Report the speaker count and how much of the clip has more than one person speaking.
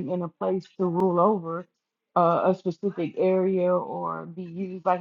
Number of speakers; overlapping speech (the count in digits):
1, no overlap